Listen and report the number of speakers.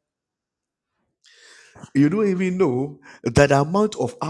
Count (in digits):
1